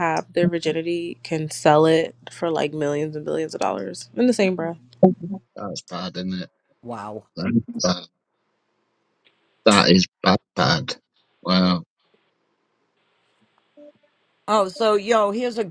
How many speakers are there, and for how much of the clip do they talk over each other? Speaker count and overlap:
three, no overlap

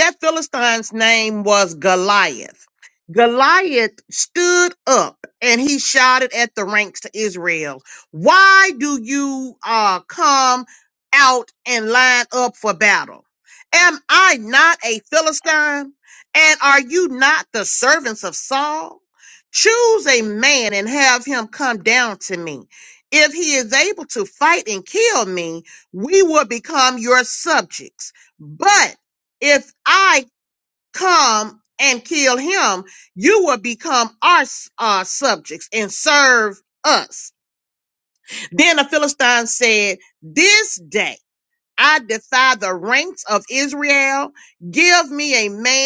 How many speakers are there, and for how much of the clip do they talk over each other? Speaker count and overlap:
one, no overlap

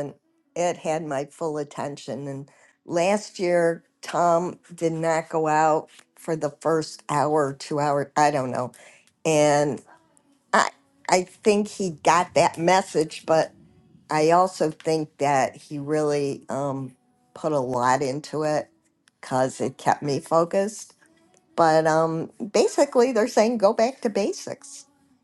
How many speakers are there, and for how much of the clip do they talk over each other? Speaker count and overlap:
one, no overlap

